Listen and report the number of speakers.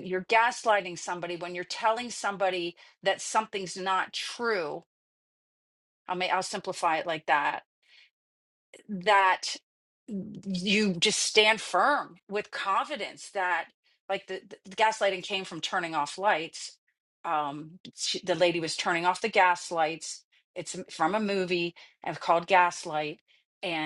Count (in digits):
1